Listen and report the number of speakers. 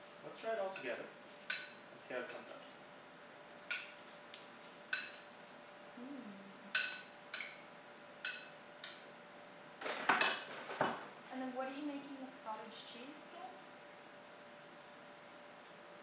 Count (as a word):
two